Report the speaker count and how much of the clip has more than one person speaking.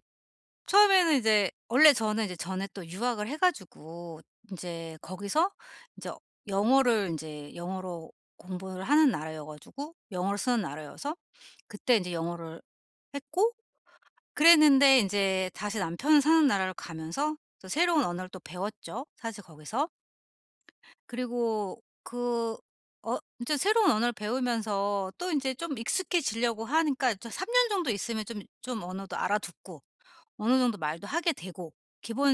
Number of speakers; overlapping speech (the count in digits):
1, no overlap